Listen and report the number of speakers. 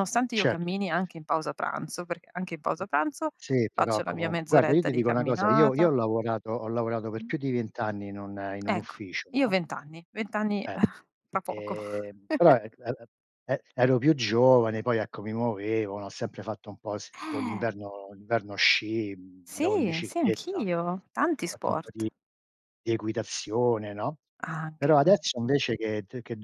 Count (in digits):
2